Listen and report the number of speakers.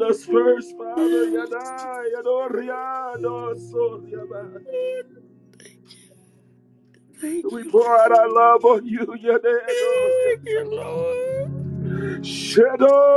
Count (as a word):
two